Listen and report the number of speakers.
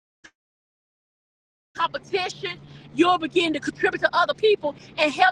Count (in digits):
1